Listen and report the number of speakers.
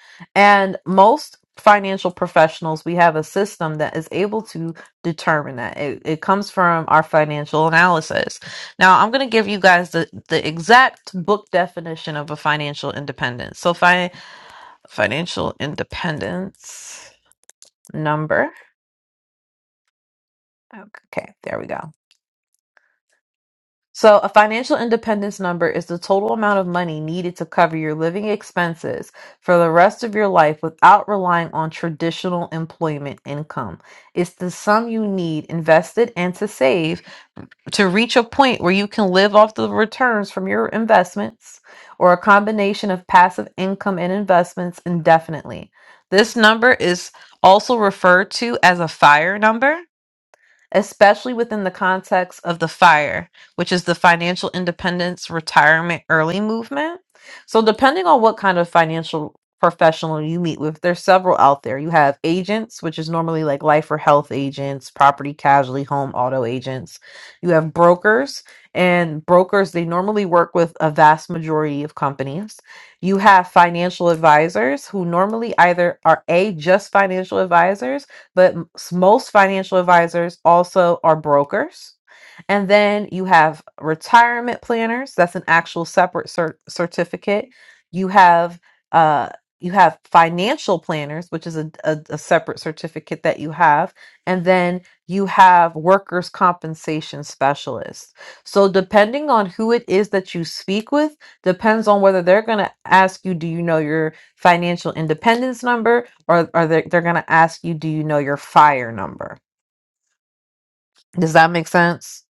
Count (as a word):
one